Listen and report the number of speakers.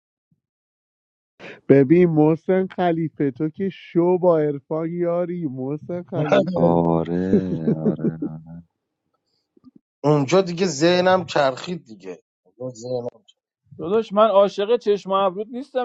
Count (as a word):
four